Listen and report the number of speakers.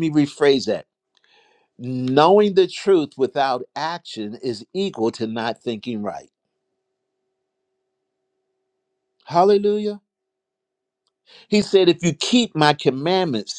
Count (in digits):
1